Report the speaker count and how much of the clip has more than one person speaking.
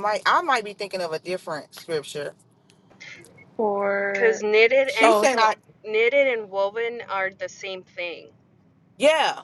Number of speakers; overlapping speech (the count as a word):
three, about 10%